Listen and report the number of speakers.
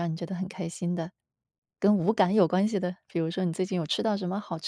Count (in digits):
1